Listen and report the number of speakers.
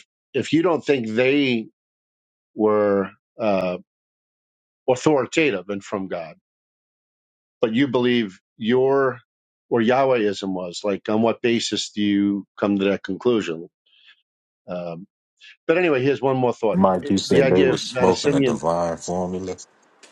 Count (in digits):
2